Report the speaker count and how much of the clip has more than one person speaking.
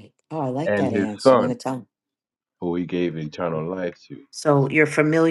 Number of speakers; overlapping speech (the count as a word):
two, about 17%